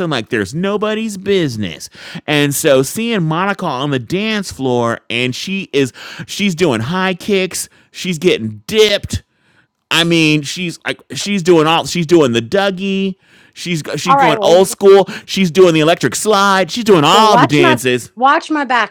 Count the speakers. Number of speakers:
two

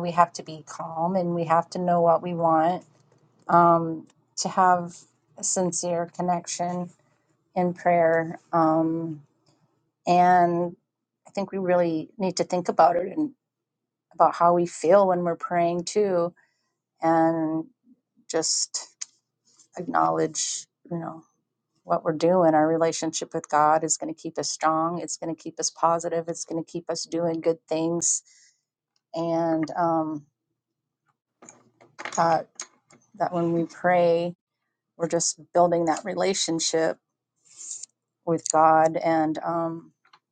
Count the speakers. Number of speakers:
one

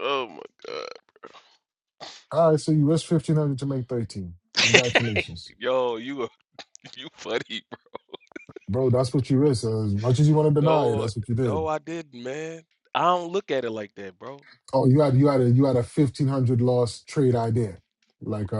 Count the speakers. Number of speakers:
two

